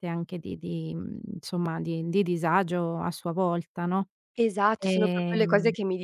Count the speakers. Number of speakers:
2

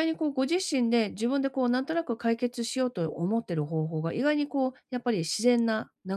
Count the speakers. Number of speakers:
1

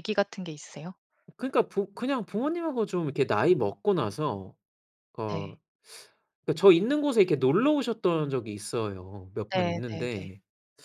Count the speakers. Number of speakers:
2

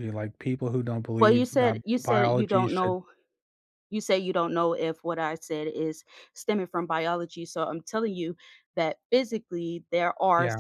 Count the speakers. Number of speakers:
2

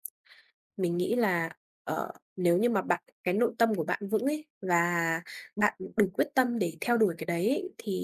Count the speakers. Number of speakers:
1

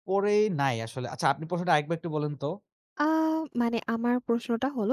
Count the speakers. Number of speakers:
2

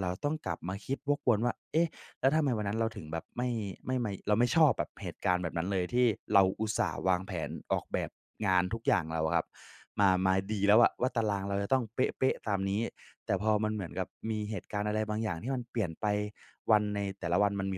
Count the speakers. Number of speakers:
1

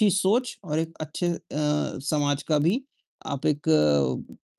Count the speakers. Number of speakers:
1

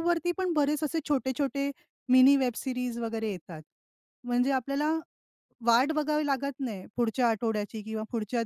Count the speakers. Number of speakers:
1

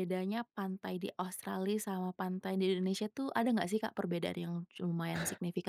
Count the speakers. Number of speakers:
1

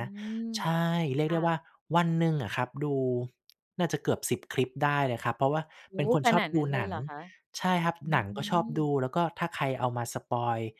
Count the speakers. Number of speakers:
2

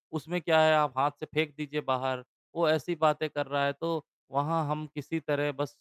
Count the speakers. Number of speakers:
1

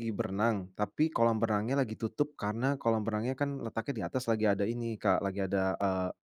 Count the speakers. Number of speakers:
1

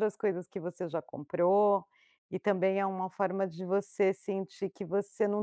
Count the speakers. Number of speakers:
1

